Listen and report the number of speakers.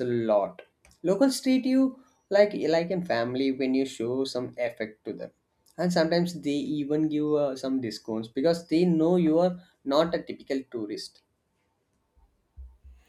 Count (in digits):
1